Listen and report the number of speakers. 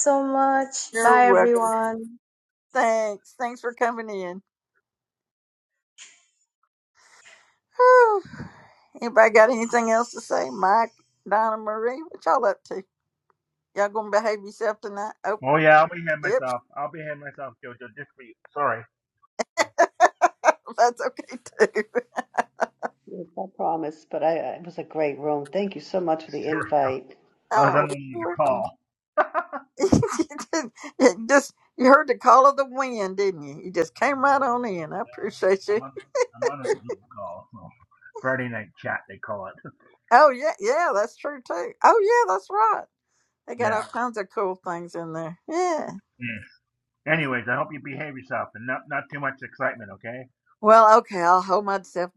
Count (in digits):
4